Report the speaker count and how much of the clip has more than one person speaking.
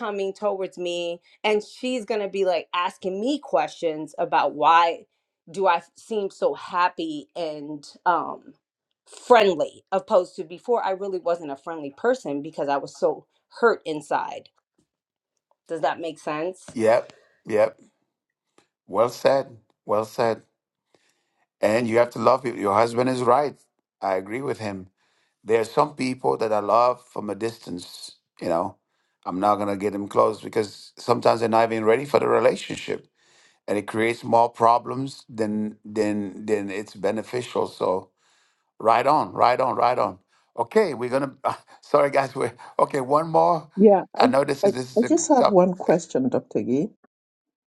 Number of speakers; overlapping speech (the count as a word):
three, about 2%